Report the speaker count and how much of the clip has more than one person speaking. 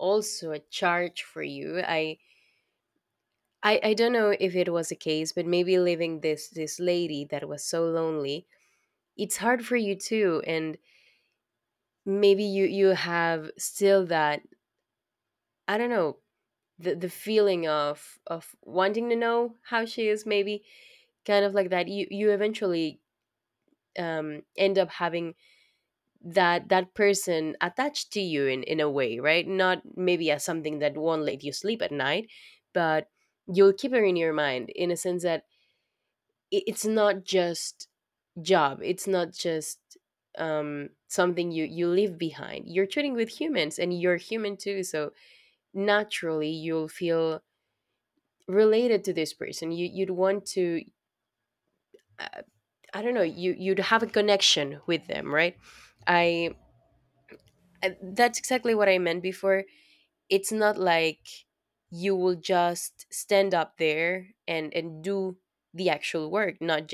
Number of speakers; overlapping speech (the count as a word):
one, no overlap